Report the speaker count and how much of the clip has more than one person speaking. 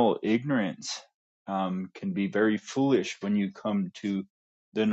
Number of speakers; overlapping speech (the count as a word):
one, no overlap